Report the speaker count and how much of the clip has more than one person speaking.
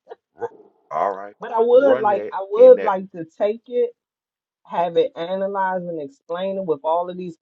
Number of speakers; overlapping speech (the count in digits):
2, about 16%